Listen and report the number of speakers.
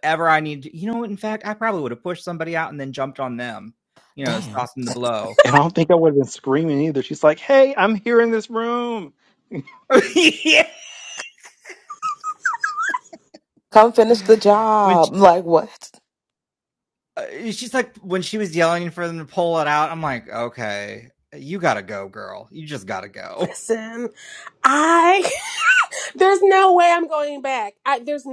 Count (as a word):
four